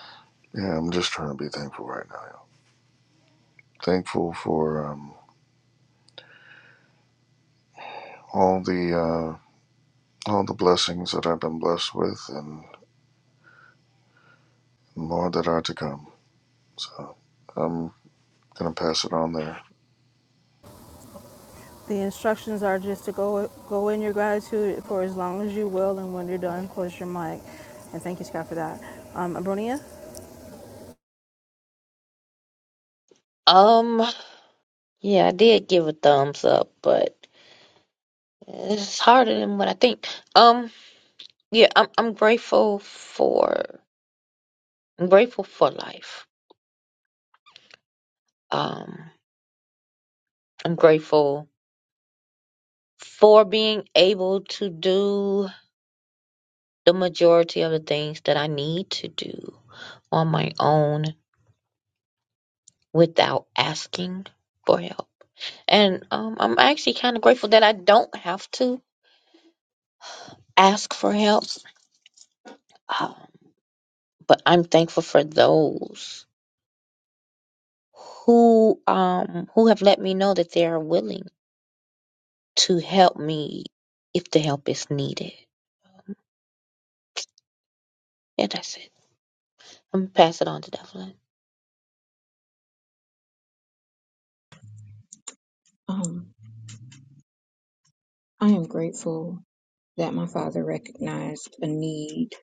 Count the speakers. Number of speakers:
4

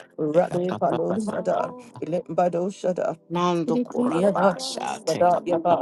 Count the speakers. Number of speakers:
2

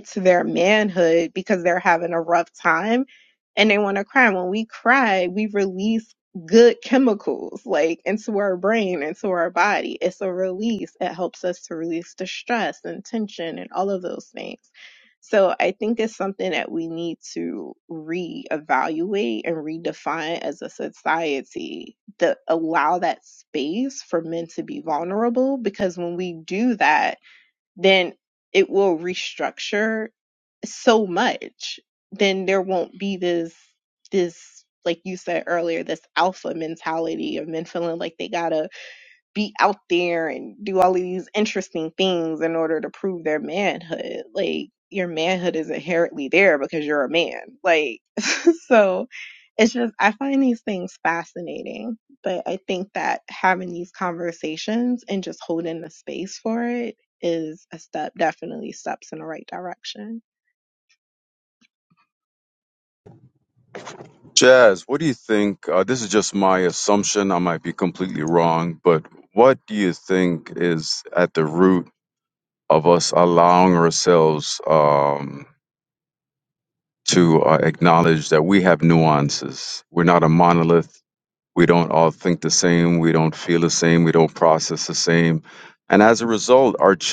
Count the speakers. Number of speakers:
2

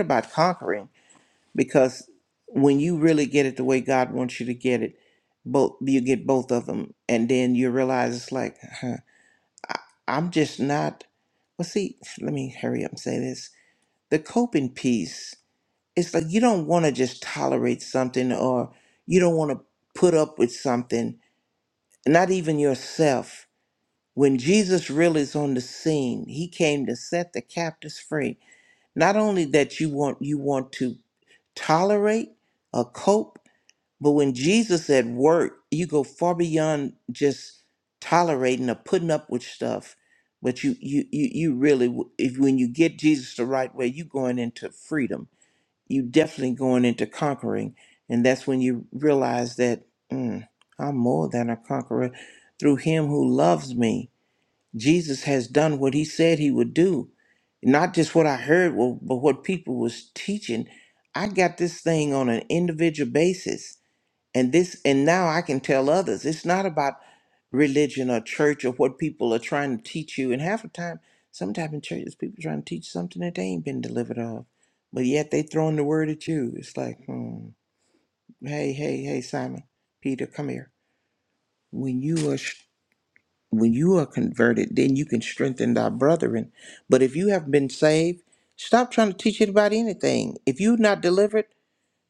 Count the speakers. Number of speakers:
1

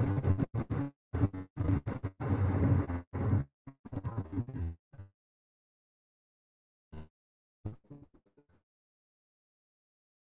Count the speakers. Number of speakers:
0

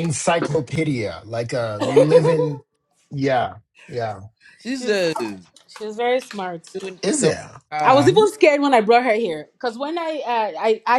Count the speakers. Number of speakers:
3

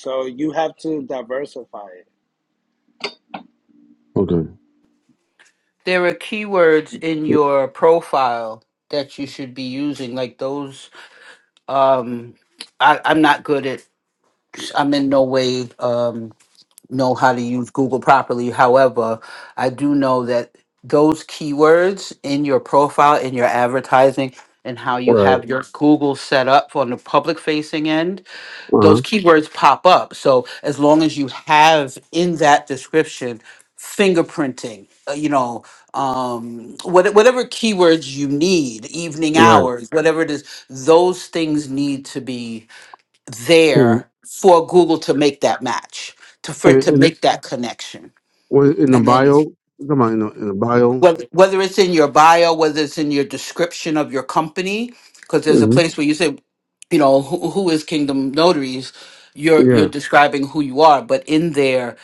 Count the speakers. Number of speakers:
3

